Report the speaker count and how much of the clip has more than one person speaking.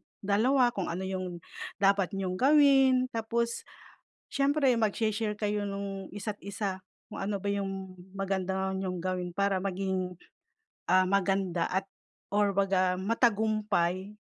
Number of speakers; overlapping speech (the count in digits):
1, no overlap